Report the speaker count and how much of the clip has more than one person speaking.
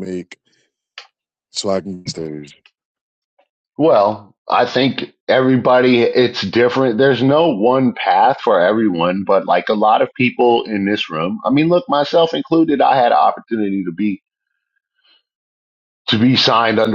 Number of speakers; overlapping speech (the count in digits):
2, no overlap